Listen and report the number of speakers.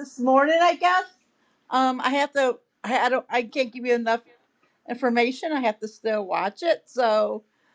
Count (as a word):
one